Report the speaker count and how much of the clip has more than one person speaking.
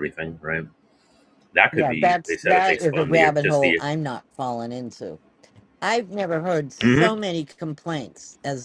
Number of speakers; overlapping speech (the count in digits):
2, about 28%